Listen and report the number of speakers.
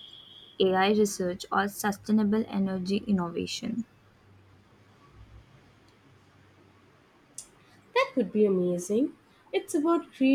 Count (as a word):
two